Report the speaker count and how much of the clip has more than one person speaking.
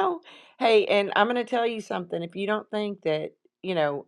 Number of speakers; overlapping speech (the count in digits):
1, no overlap